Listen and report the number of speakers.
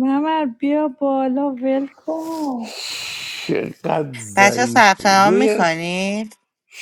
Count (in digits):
3